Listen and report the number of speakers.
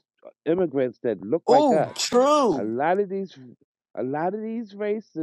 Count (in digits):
2